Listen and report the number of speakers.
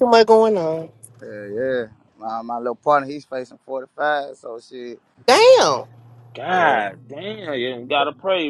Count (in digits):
3